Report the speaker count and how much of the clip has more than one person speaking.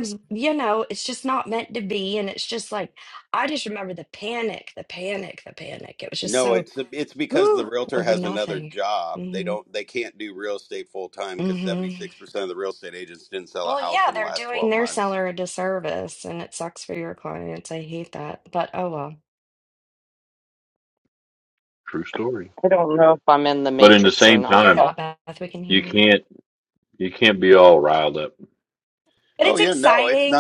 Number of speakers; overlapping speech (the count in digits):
4, about 21%